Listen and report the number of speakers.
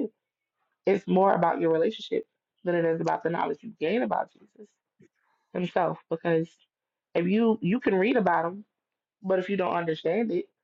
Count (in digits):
1